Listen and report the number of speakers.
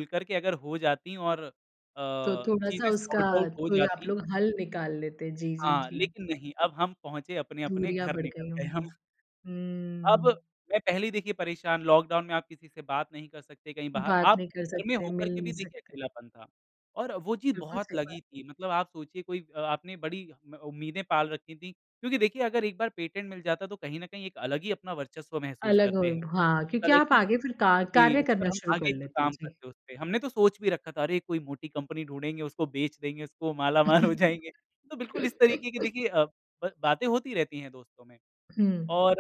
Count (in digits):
2